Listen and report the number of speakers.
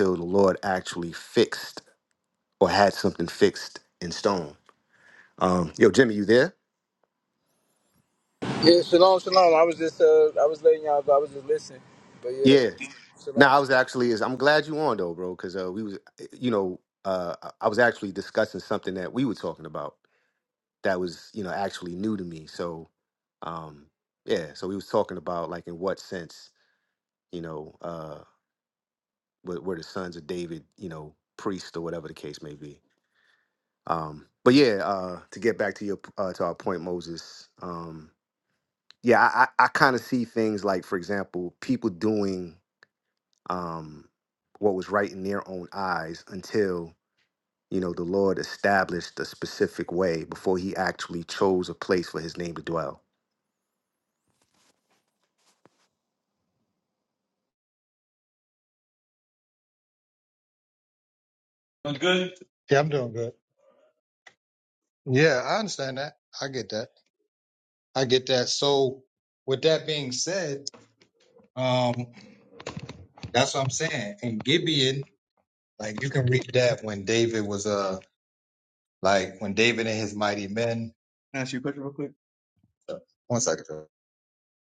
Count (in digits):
3